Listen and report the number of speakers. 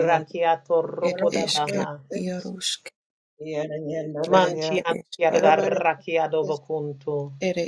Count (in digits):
3